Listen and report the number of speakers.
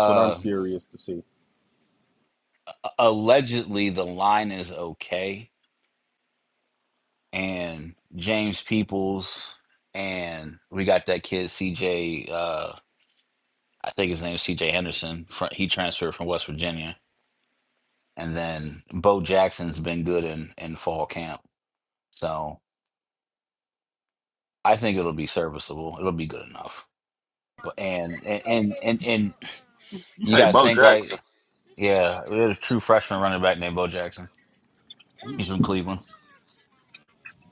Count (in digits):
2